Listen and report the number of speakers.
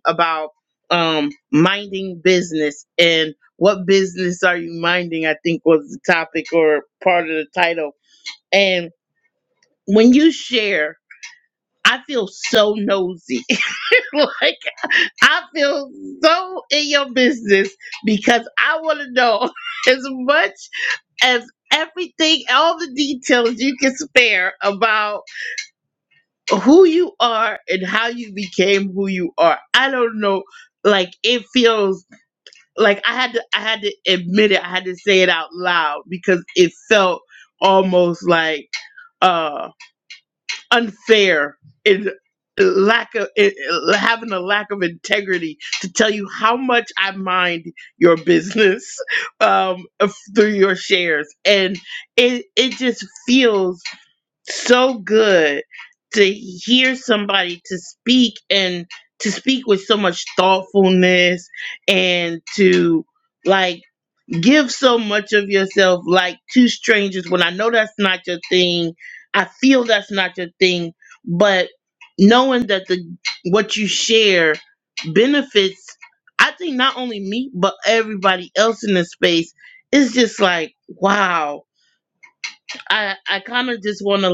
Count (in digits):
1